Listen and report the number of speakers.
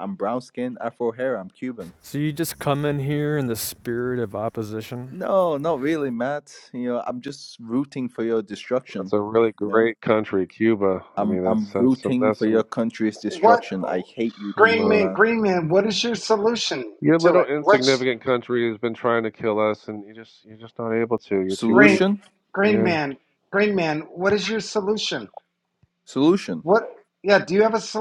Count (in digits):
4